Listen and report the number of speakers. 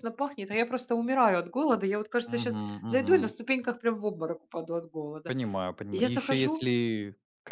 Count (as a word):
two